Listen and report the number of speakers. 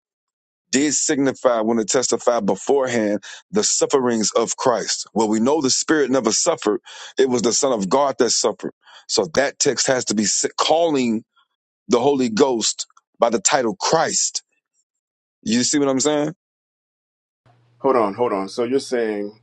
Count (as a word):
two